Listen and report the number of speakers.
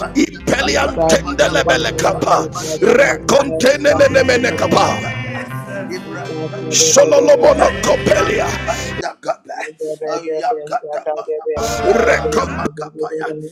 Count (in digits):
3